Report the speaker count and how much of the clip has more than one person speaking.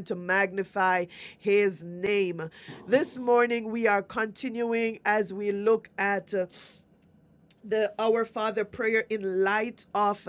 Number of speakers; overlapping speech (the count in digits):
1, no overlap